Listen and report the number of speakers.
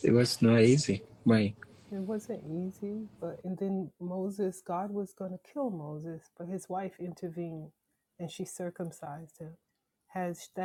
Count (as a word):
two